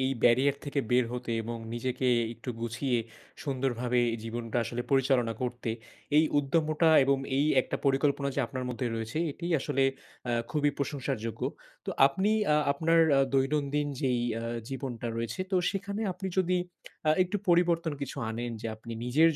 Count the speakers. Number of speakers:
one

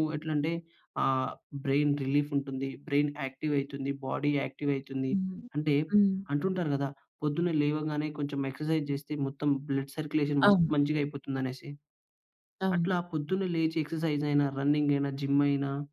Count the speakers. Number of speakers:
two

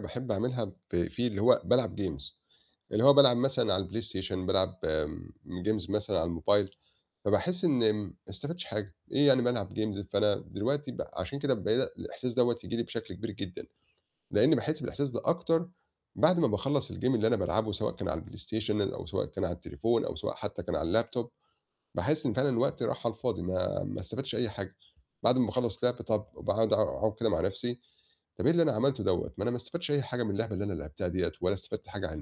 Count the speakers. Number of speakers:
one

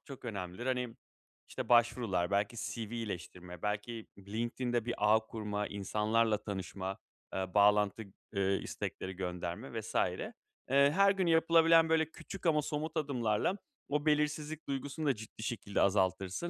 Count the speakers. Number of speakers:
one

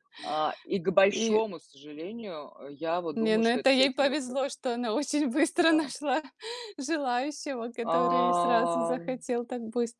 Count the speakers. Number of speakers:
two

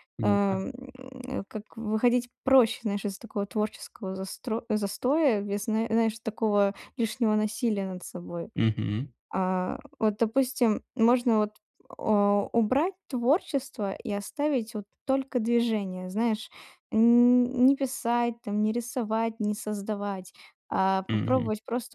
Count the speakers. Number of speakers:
two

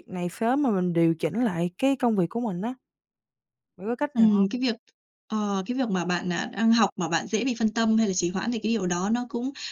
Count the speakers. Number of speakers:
two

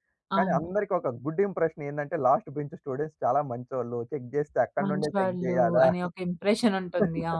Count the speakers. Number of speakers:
two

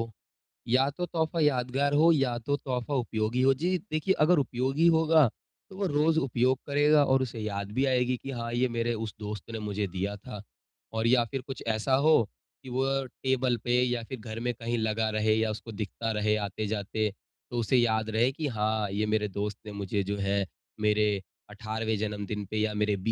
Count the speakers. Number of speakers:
one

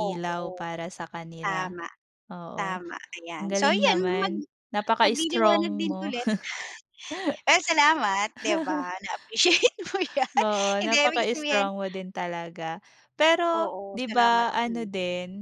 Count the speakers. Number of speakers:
two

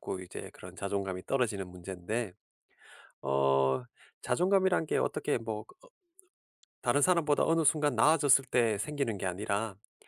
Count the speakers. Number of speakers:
one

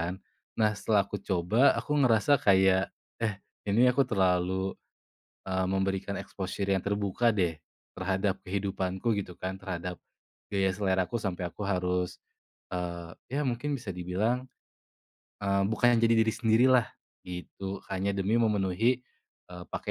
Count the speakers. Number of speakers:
one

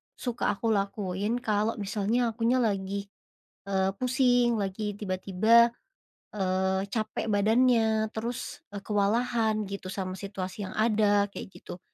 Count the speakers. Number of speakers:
one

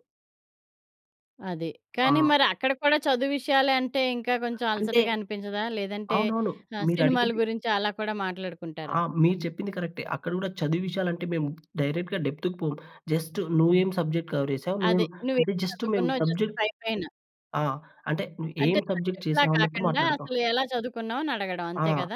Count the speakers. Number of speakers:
two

